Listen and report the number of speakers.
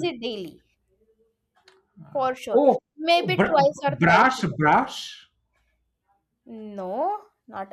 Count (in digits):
2